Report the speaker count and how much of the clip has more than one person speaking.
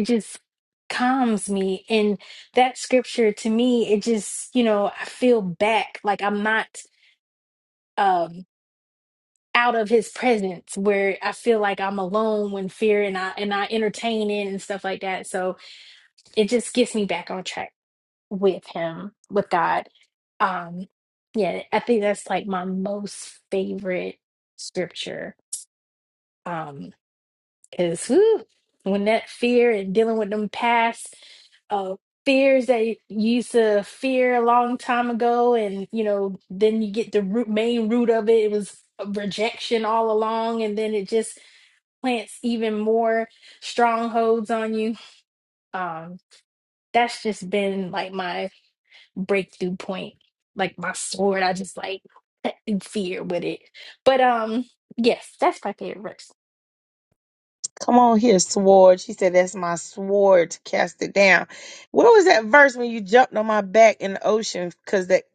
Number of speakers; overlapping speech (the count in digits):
2, no overlap